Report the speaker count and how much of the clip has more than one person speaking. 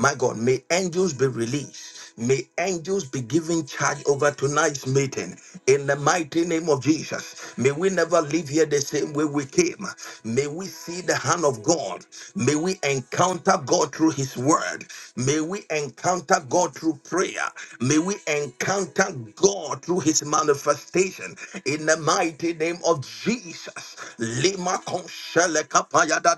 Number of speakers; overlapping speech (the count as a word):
one, no overlap